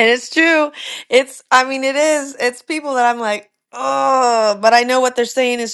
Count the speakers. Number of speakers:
one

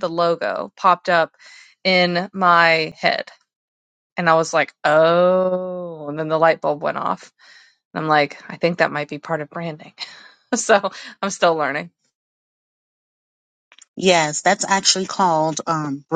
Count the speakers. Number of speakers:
two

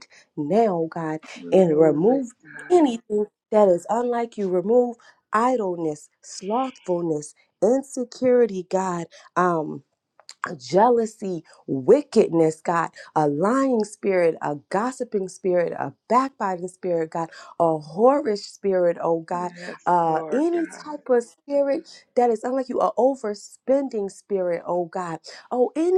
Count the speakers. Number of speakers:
two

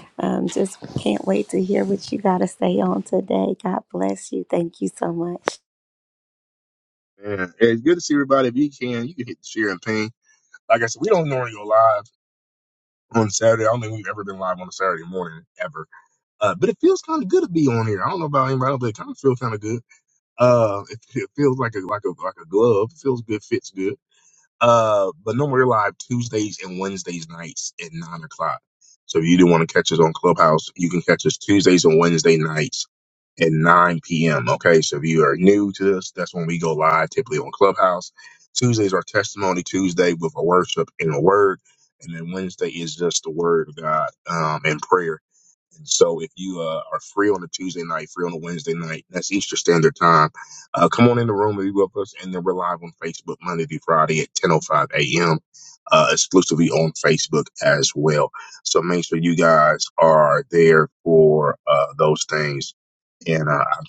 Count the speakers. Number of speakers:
two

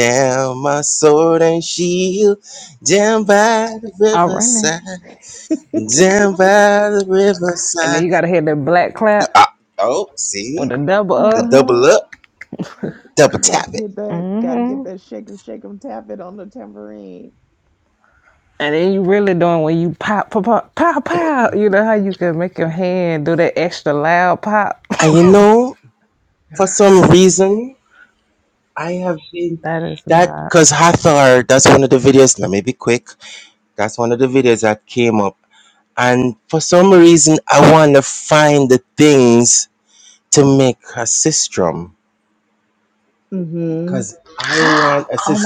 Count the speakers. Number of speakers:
three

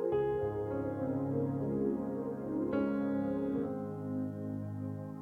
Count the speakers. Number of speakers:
zero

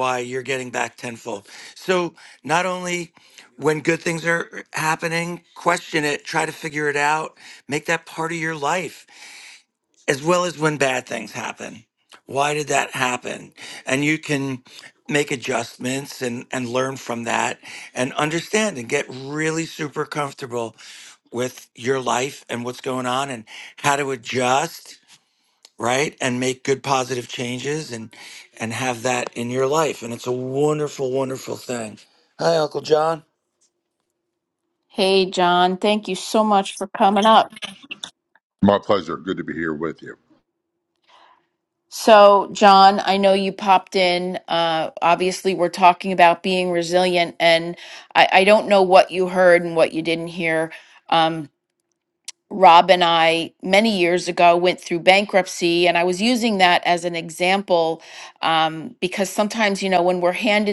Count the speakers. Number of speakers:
three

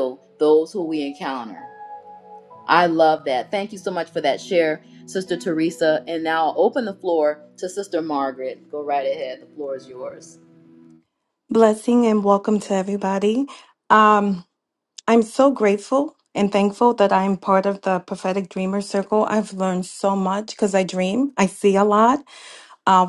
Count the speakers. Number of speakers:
two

